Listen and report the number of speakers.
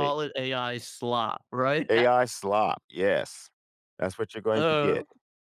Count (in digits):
2